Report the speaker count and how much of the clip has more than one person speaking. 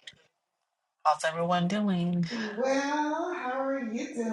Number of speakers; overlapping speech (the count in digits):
2, no overlap